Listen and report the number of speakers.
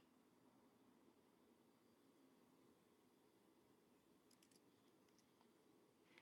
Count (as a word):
zero